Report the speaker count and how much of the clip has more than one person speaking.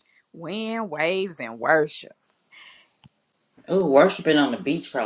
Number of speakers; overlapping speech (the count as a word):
two, no overlap